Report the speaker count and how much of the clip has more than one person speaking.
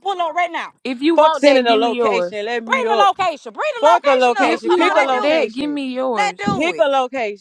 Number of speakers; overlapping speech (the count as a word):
three, about 55%